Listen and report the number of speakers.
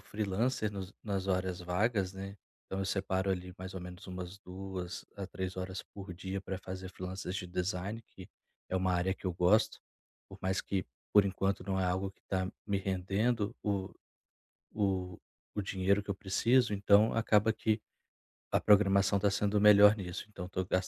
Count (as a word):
one